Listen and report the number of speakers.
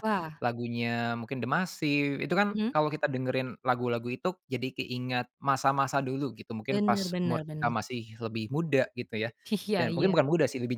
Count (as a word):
two